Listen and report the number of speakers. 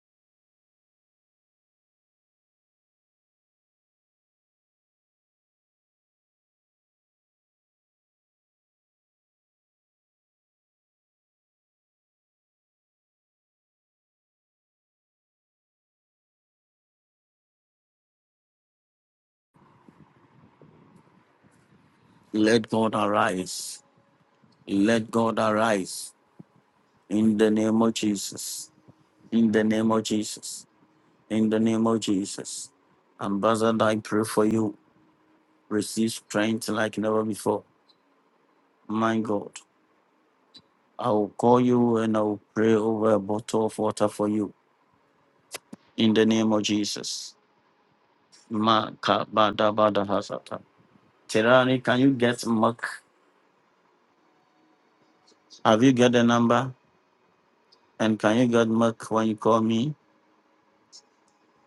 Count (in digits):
1